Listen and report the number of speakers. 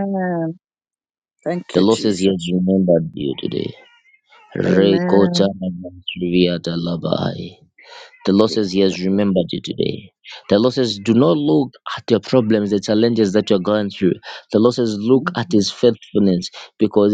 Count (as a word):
two